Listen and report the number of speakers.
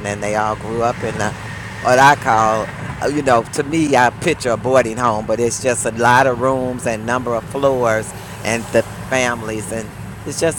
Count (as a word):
one